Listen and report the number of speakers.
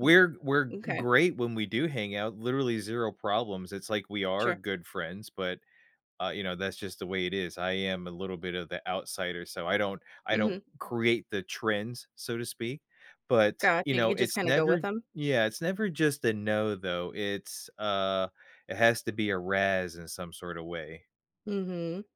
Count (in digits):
2